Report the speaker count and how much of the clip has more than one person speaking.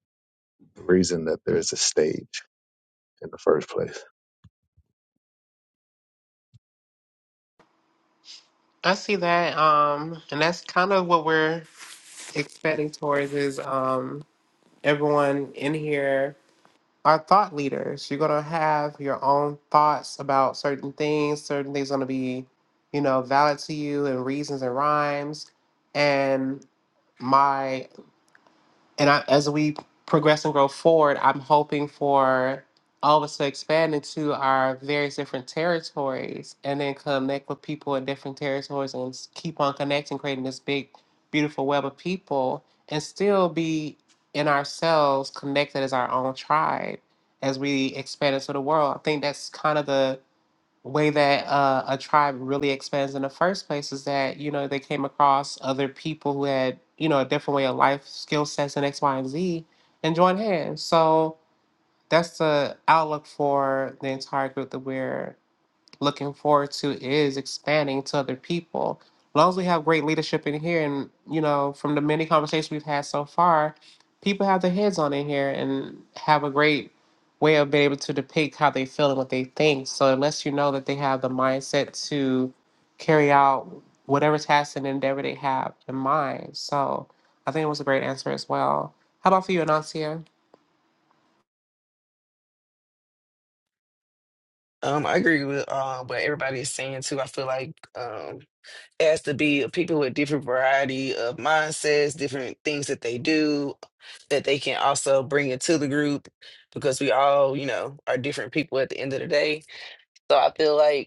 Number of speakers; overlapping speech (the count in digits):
3, no overlap